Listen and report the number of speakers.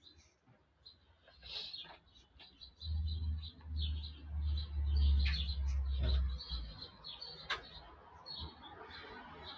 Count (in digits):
0